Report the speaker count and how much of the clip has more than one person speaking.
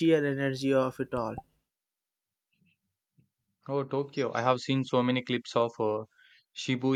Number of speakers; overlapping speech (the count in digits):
2, no overlap